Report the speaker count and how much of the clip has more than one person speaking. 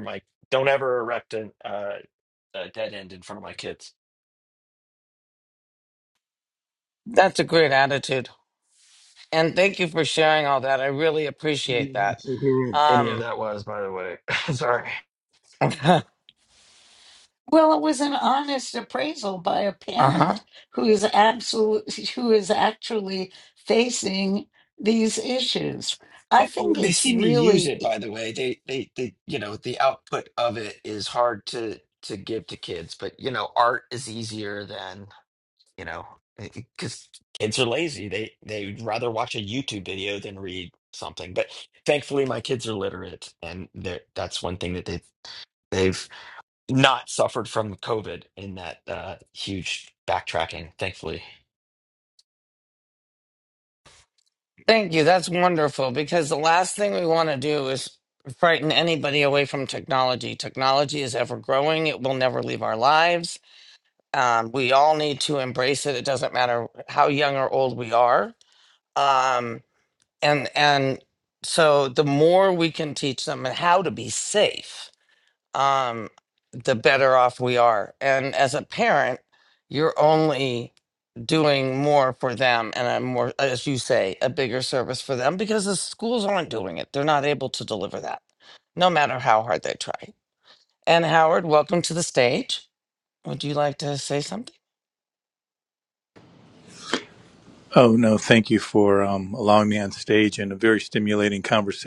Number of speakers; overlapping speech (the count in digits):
4, about 2%